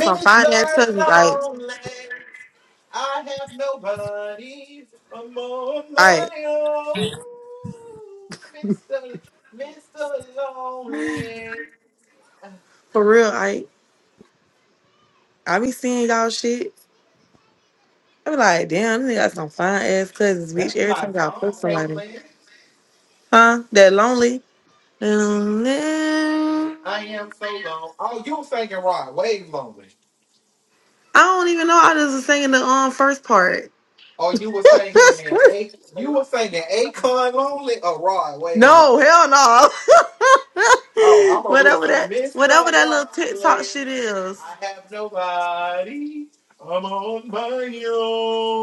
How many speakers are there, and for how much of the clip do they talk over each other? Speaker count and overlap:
2, about 11%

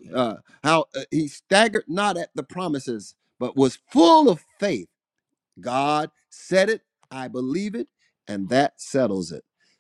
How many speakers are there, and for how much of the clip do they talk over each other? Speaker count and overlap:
1, no overlap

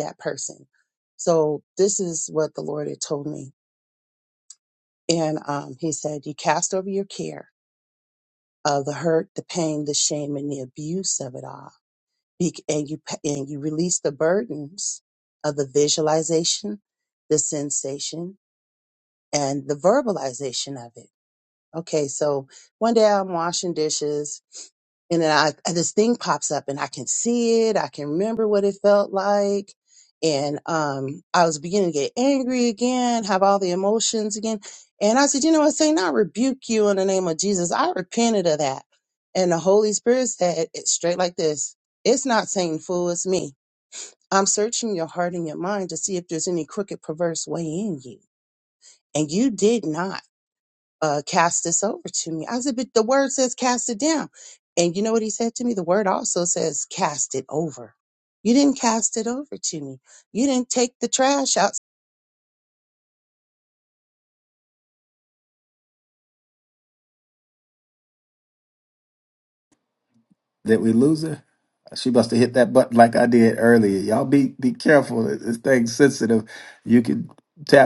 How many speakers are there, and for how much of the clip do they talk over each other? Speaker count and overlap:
2, no overlap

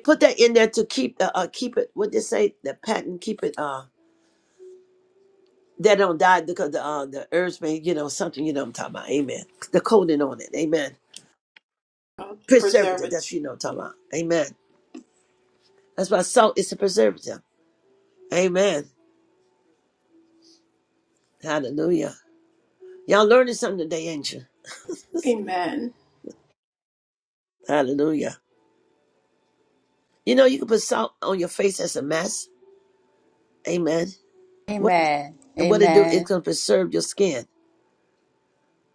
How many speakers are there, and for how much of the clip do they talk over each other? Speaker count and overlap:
3, about 5%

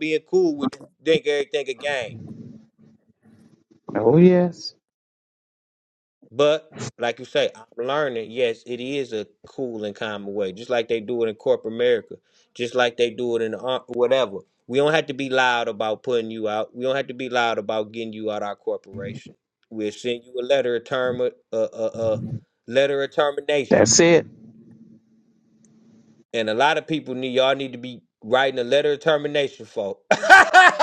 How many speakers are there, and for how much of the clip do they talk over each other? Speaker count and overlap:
2, under 1%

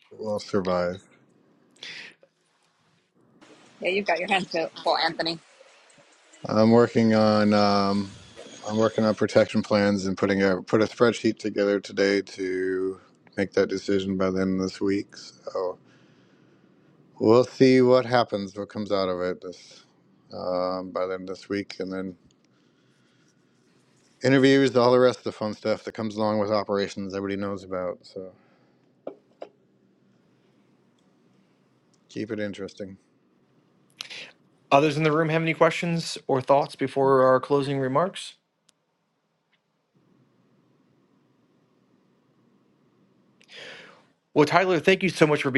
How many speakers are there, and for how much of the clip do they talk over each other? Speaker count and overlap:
3, no overlap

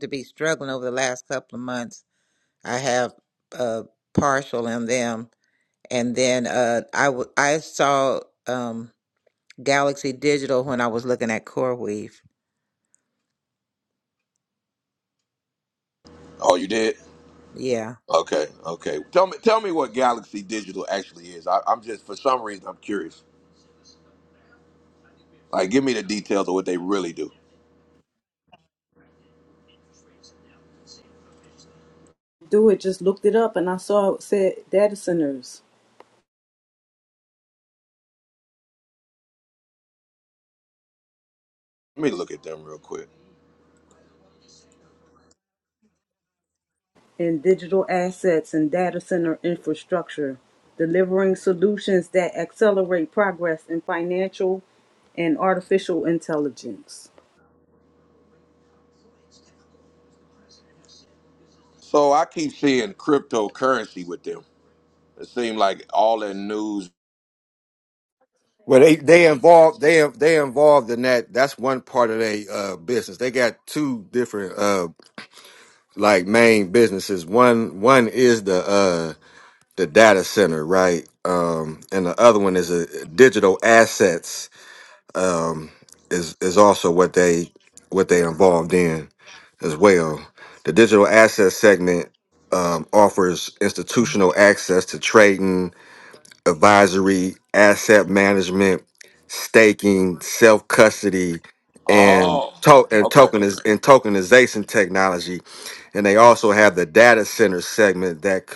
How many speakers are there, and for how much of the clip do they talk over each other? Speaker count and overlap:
4, about 1%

